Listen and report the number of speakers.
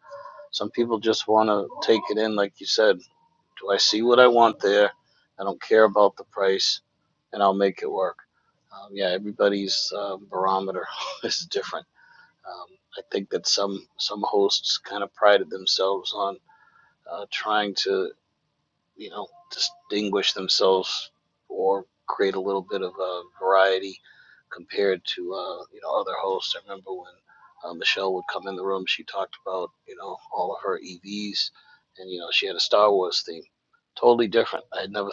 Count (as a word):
one